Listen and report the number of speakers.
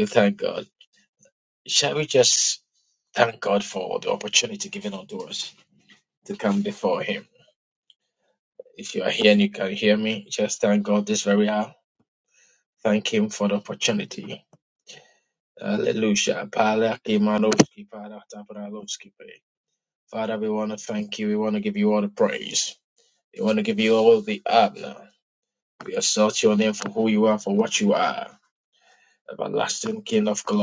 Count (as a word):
one